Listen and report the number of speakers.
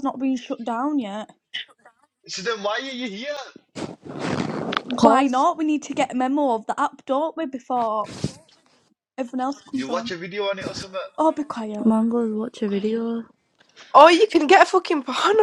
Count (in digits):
4